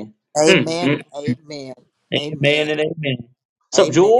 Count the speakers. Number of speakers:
two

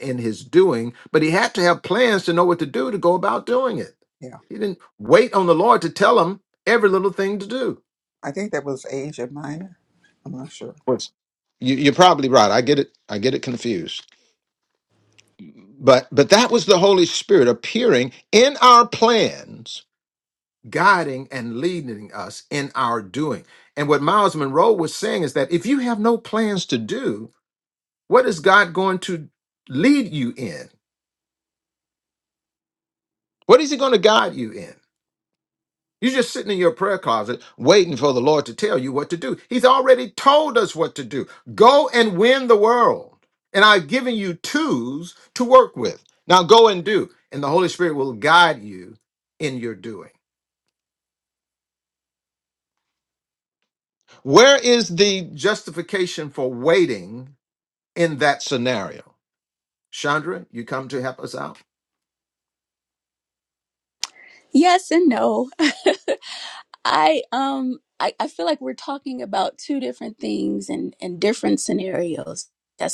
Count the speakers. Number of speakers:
three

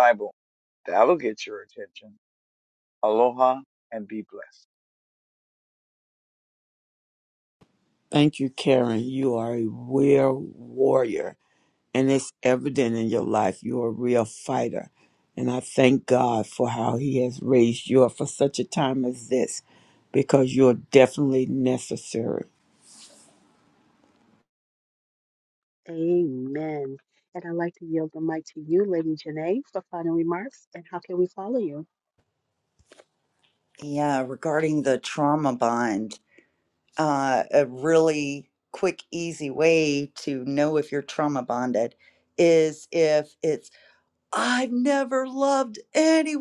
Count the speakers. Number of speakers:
four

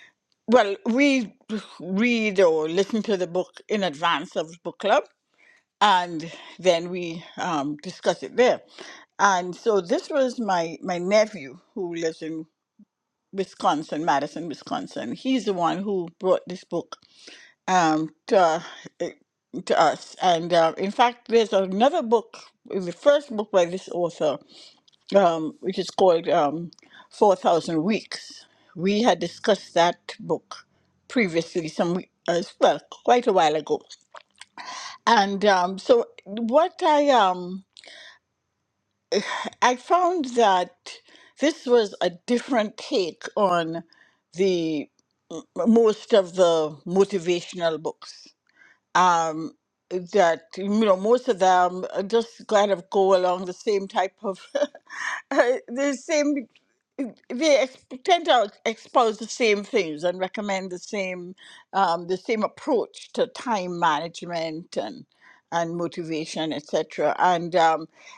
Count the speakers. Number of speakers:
one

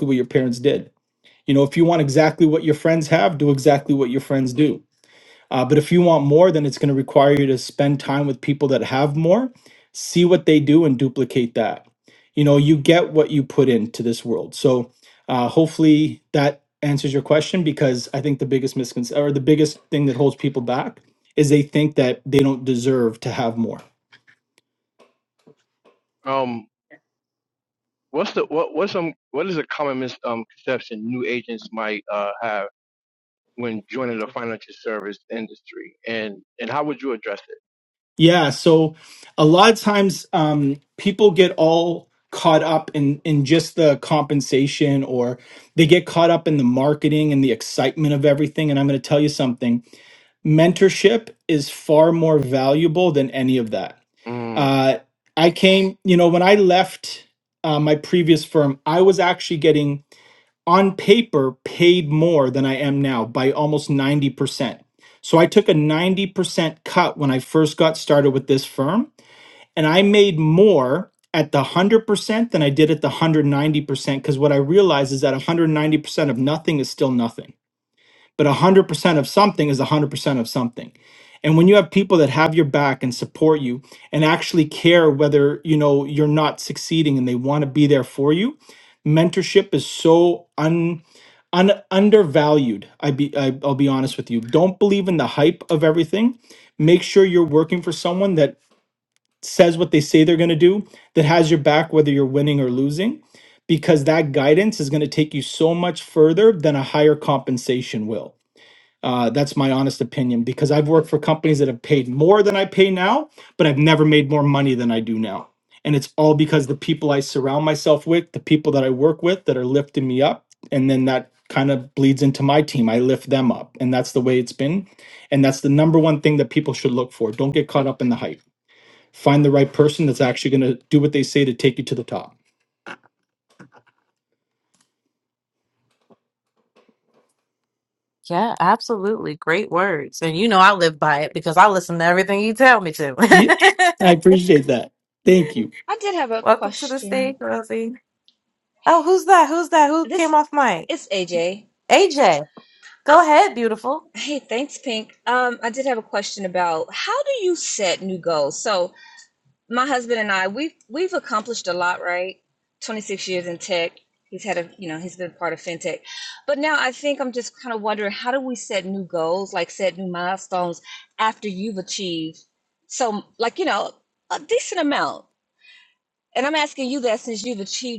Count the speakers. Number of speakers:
four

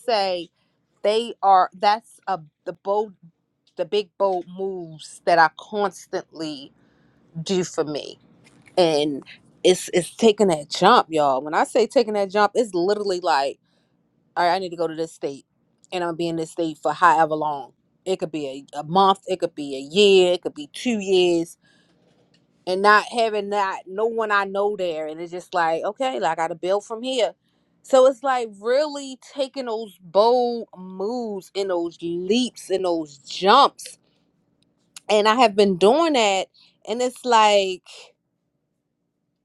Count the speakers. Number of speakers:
one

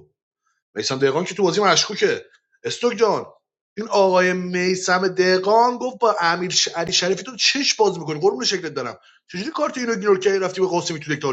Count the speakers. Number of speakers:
one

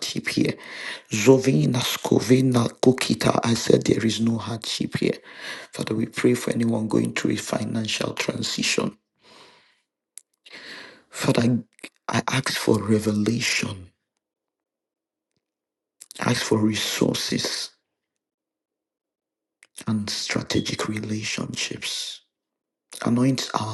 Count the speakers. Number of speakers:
one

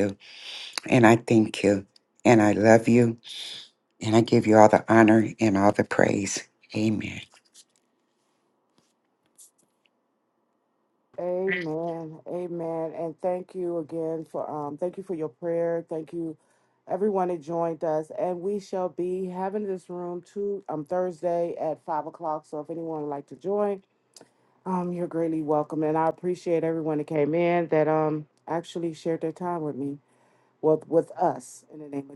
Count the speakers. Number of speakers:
two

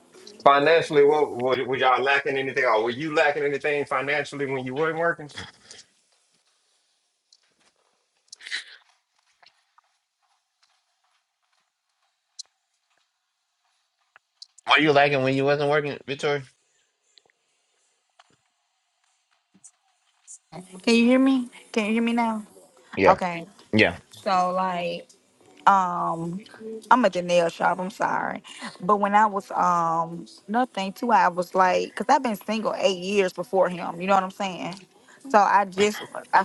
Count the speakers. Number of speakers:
three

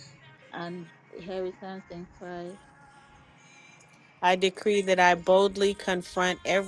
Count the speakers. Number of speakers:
two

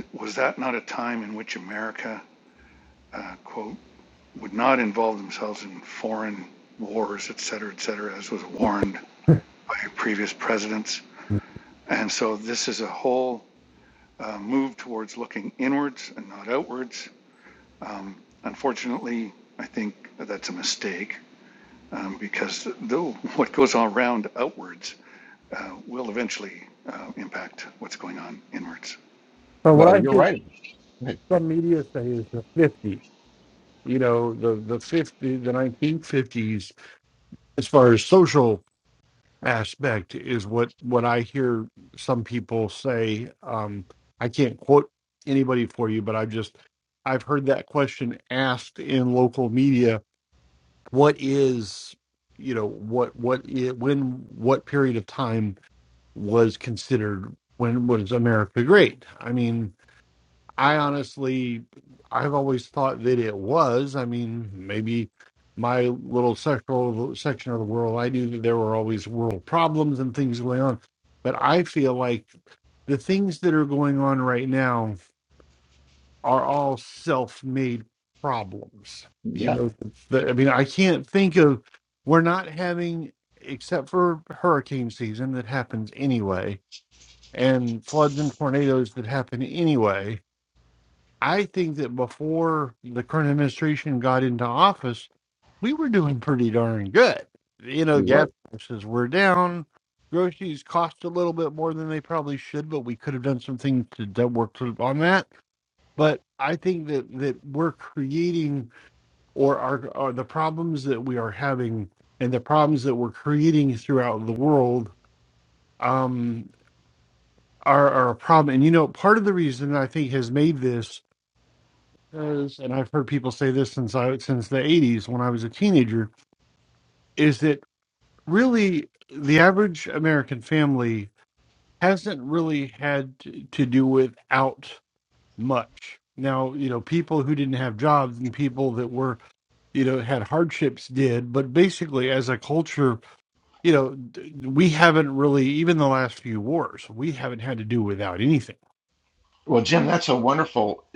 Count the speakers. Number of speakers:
three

